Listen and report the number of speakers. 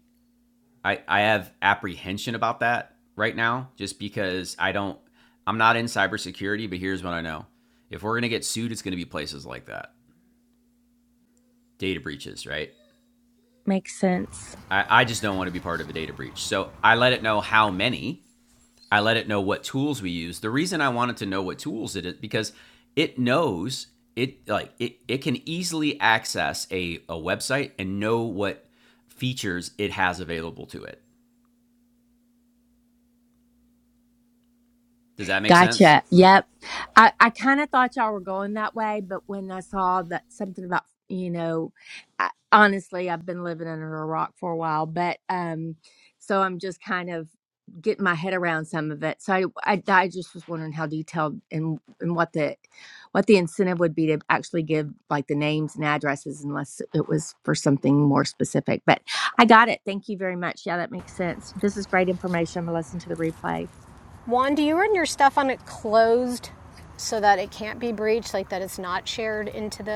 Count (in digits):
3